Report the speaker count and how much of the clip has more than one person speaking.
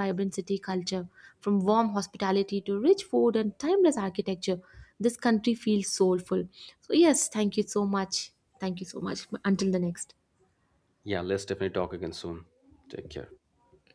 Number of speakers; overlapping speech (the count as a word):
two, no overlap